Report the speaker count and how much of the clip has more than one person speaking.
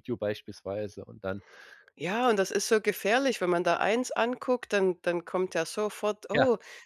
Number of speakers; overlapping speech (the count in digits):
2, about 2%